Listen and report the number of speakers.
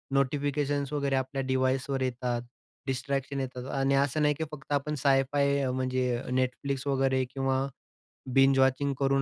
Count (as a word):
one